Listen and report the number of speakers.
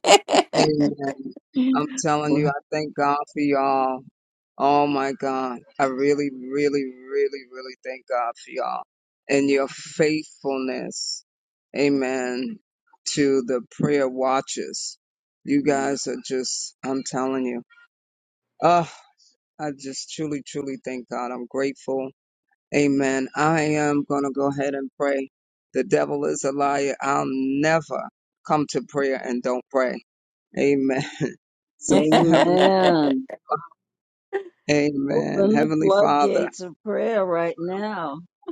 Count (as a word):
two